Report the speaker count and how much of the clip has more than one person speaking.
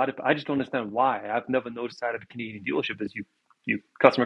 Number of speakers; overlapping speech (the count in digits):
1, no overlap